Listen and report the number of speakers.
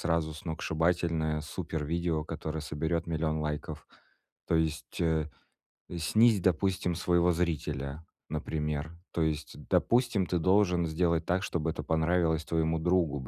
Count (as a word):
one